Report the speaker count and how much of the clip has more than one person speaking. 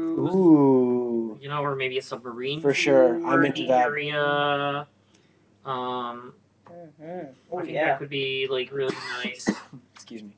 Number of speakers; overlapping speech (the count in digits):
3, about 22%